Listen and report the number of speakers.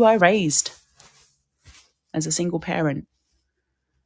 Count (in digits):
1